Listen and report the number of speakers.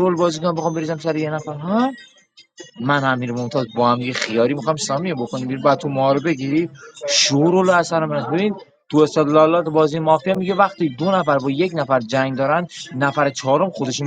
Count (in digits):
1